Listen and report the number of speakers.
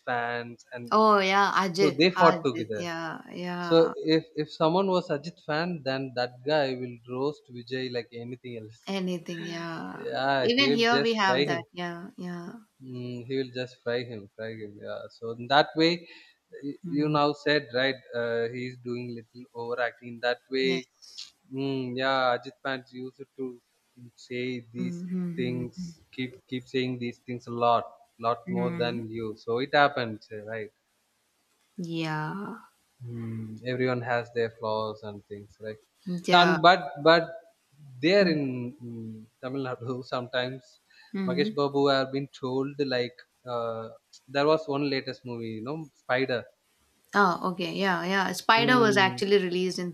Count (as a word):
two